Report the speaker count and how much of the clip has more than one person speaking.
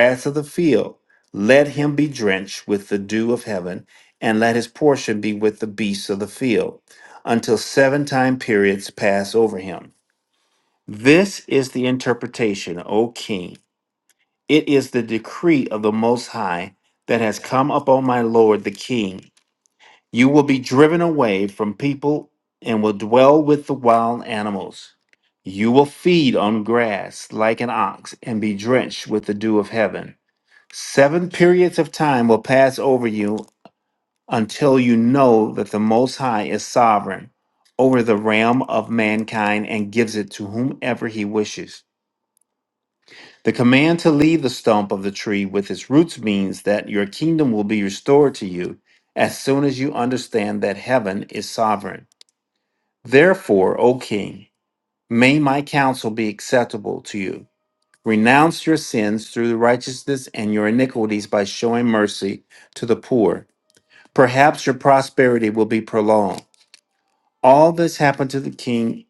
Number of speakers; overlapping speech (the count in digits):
1, no overlap